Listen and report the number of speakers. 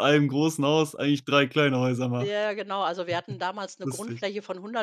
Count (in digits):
2